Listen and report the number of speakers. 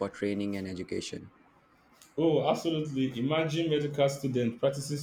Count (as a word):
two